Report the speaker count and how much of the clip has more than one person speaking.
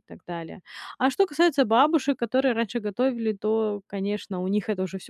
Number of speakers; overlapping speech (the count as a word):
one, no overlap